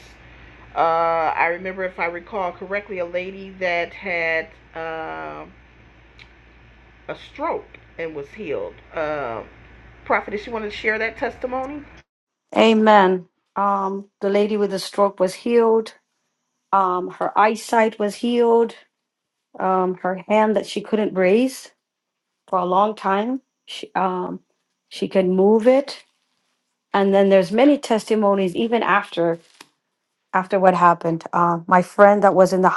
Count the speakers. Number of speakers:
two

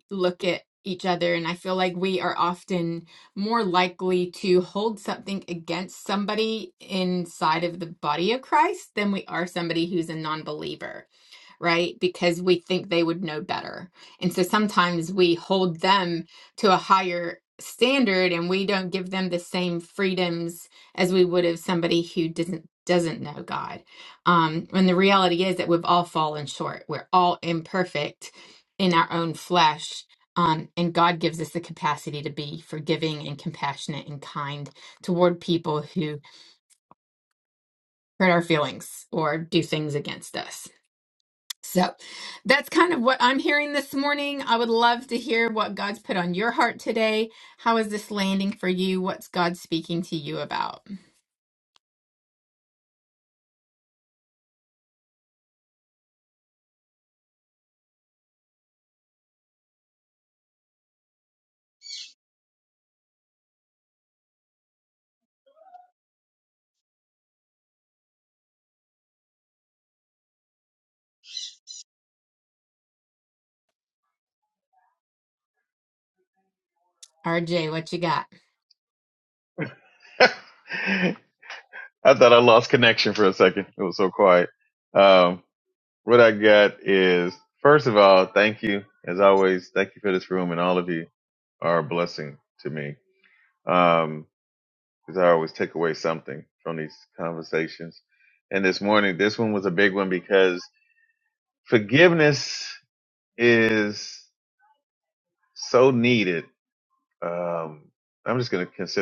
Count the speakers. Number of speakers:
two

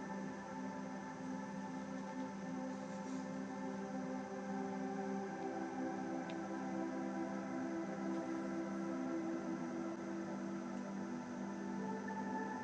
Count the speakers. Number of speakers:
zero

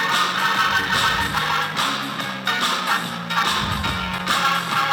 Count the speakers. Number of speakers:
zero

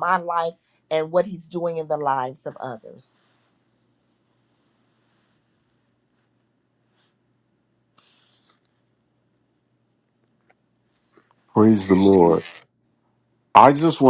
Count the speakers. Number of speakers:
two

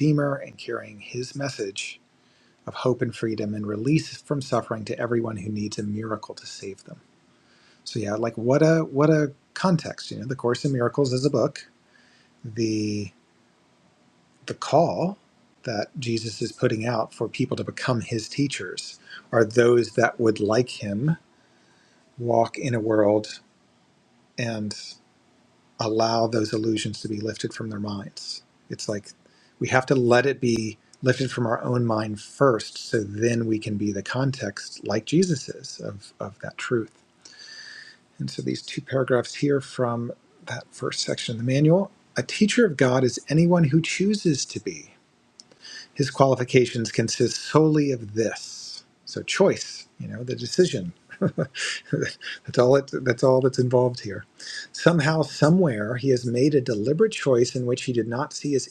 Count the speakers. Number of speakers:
one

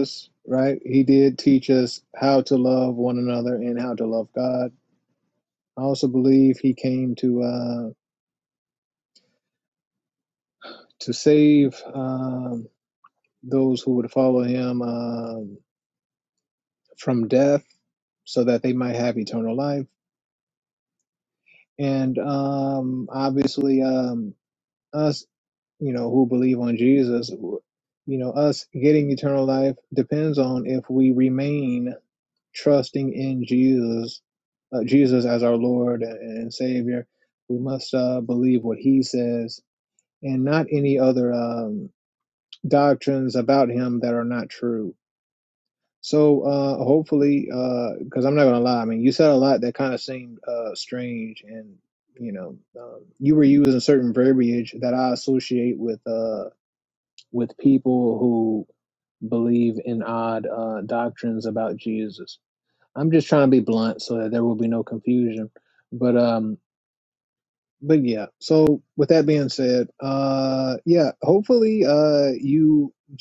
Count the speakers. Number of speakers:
one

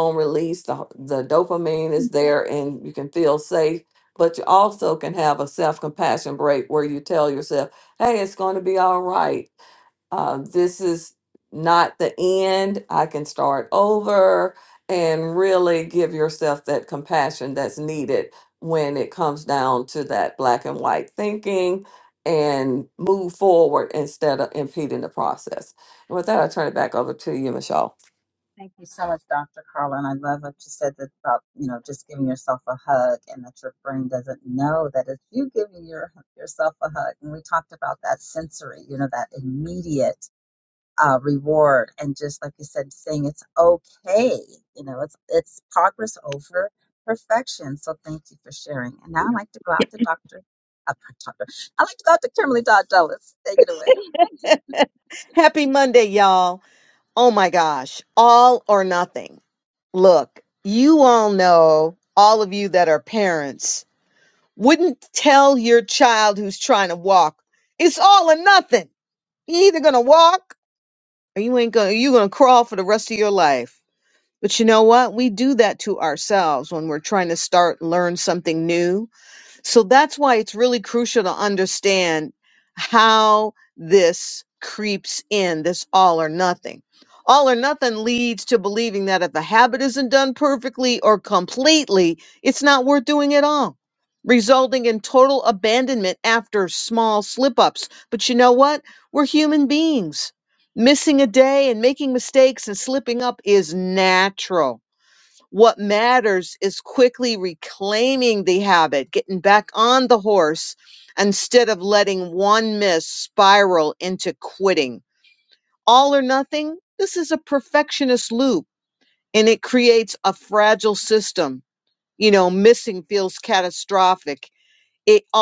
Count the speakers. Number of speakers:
three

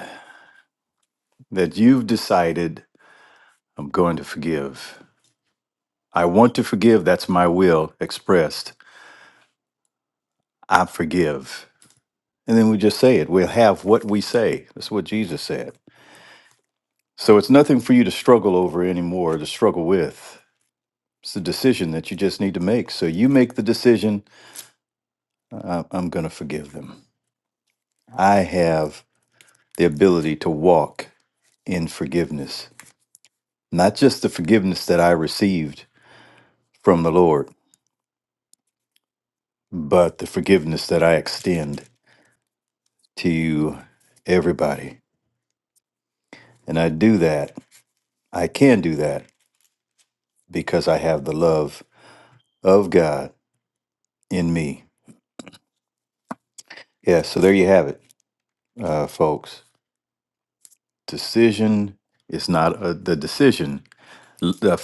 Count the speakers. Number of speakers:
one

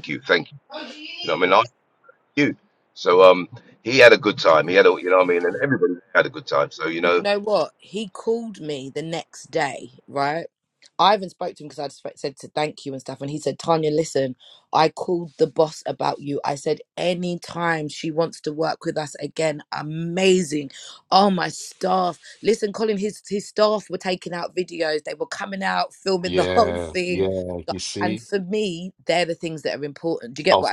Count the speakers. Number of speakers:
three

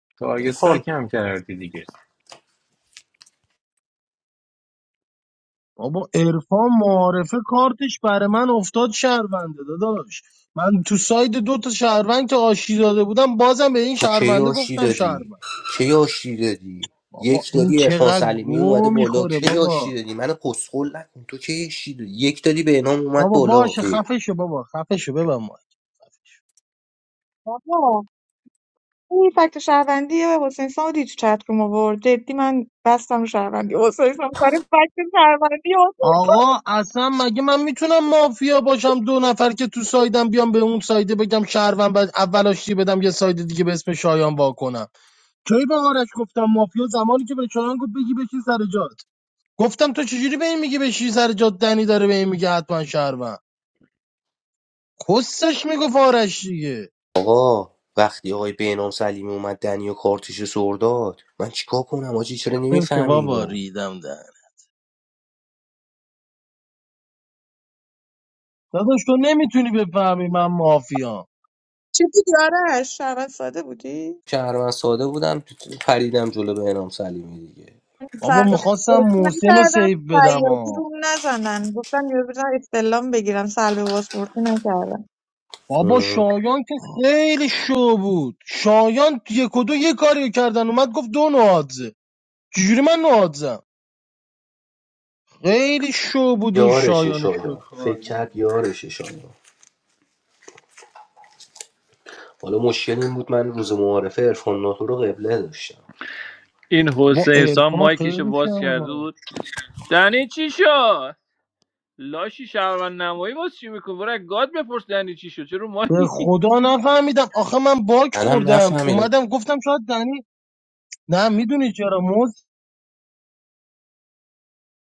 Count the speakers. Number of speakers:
five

